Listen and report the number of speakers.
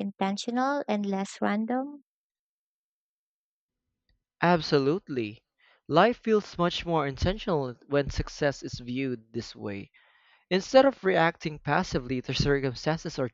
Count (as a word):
two